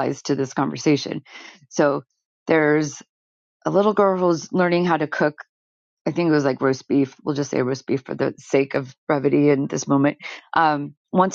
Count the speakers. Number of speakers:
one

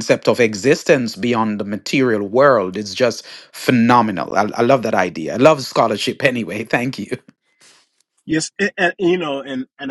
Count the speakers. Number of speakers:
two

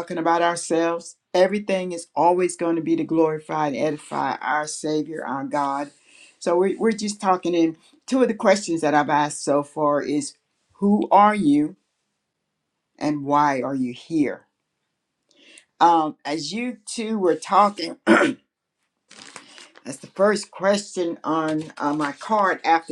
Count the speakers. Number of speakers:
one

